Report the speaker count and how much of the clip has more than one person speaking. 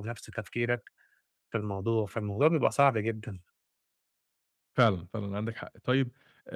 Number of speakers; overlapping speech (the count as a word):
two, no overlap